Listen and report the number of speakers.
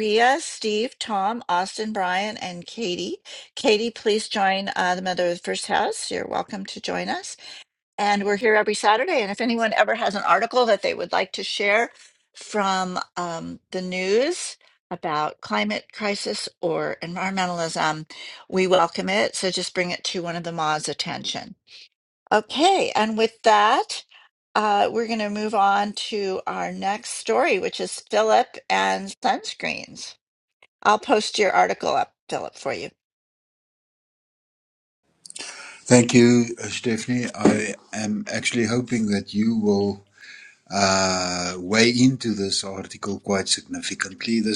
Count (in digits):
2